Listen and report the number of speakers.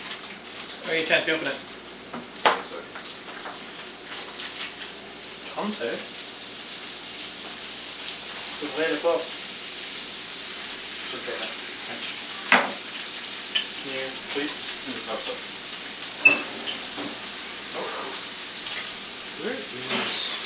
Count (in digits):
2